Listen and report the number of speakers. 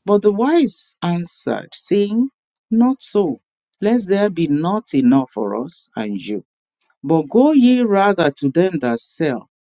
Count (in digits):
1